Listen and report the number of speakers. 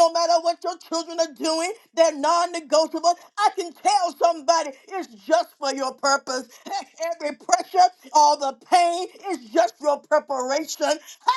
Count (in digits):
1